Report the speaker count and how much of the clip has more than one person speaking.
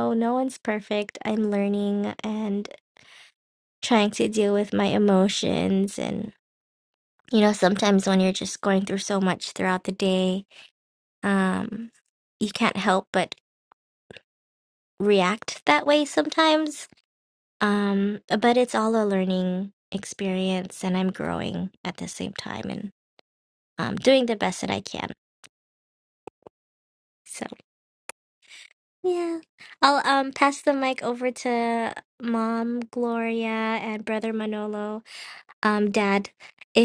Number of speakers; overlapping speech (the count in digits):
1, no overlap